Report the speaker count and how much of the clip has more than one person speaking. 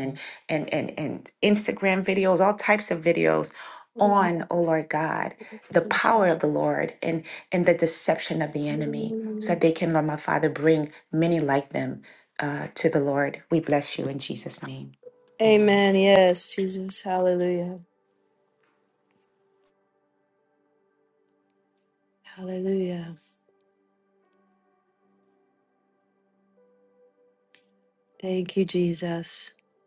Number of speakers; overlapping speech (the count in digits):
2, about 1%